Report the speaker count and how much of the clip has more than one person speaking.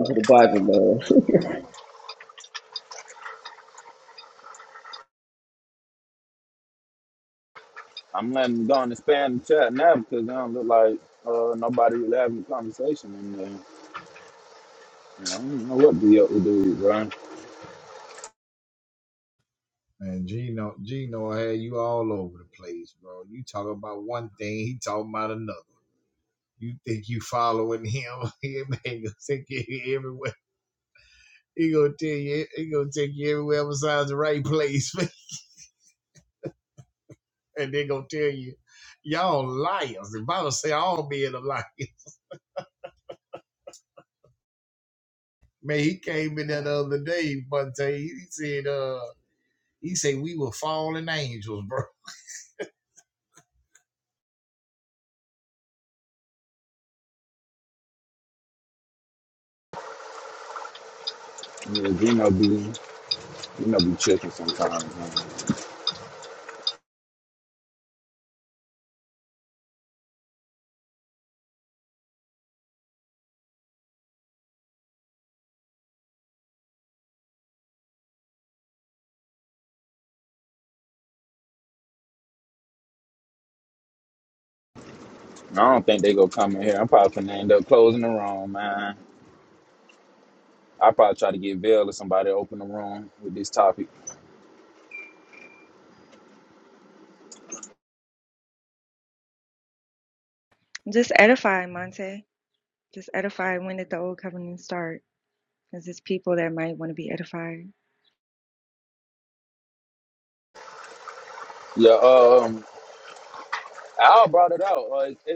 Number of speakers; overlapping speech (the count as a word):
four, no overlap